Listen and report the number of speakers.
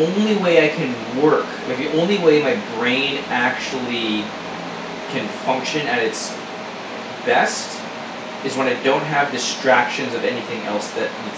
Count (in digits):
1